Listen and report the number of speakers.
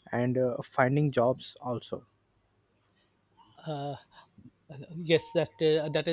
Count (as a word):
two